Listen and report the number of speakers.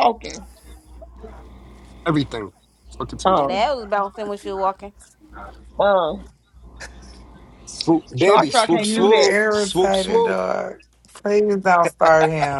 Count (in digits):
4